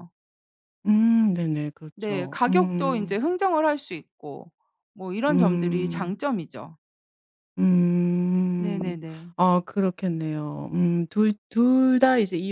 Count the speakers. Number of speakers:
2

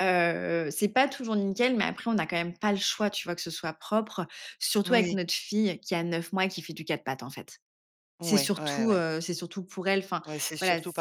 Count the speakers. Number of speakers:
2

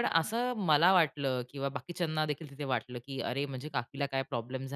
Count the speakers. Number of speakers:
1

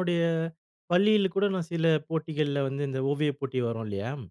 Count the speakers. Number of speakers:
1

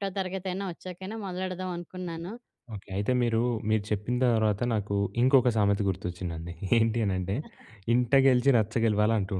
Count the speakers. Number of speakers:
2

